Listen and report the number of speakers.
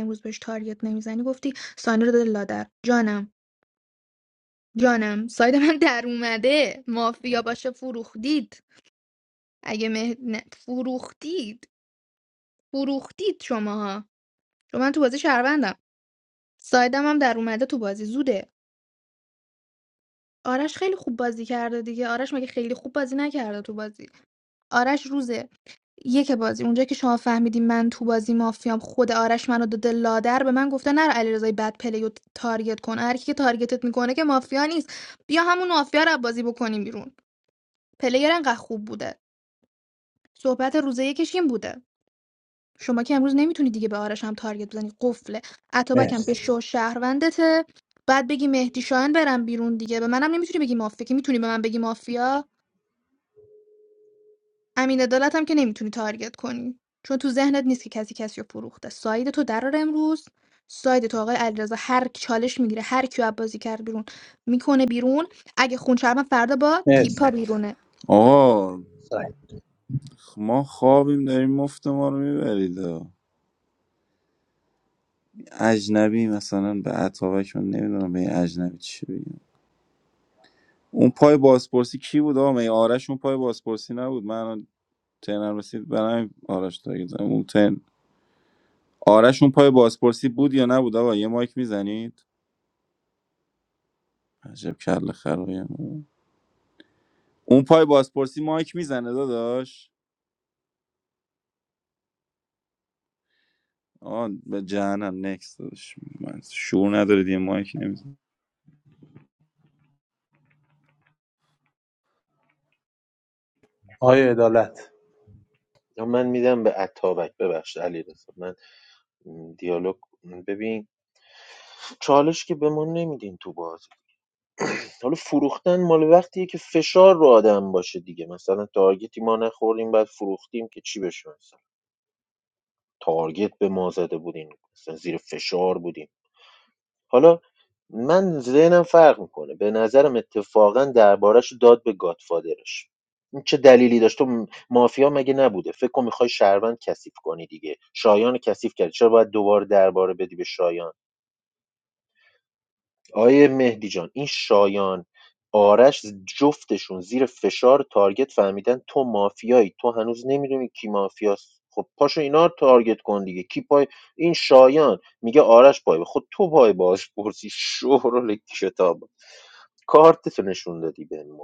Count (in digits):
4